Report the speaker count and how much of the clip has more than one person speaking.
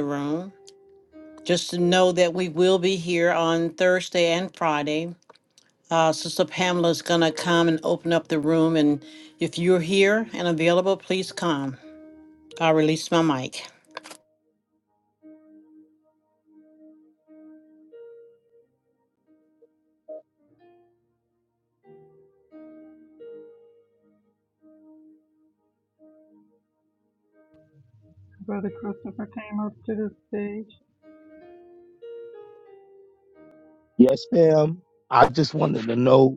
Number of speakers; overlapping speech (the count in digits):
3, no overlap